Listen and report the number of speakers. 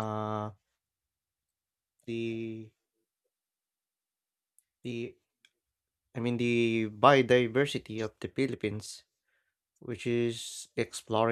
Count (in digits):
1